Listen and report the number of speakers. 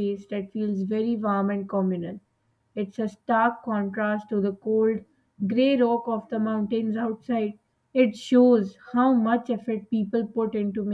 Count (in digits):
1